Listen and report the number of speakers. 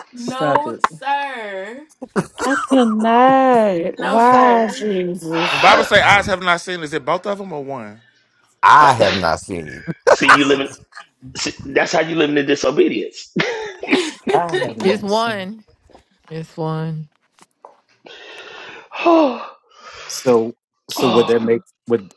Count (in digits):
8